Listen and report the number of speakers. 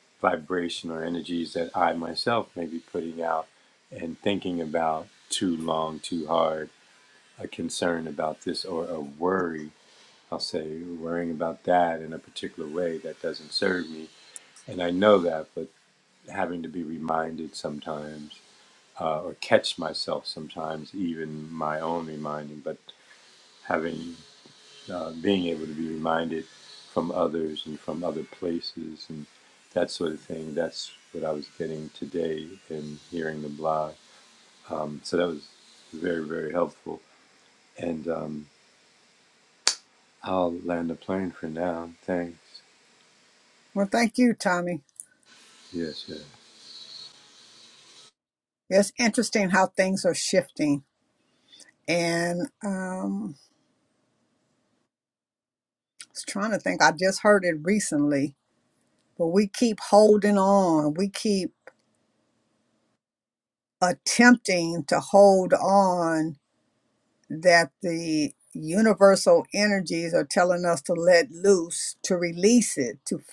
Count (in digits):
2